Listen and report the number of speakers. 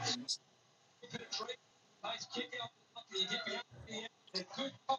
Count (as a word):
zero